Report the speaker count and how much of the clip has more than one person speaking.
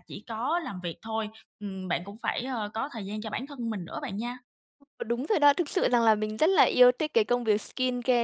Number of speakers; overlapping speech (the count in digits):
2, no overlap